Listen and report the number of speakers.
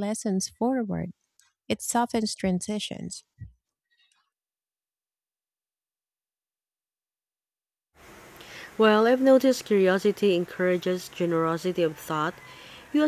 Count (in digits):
2